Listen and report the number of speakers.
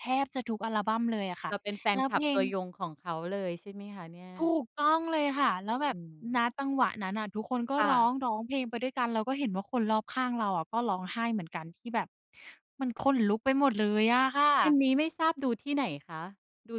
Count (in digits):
2